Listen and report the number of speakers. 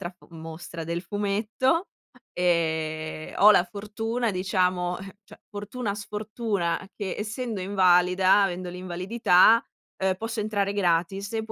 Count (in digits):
1